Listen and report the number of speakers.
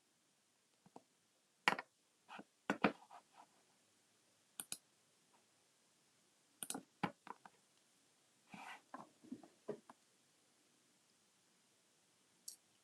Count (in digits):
0